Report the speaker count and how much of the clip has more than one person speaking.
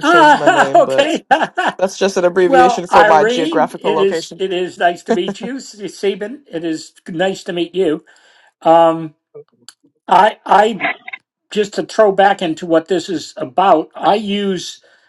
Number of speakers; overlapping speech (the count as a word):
two, about 20%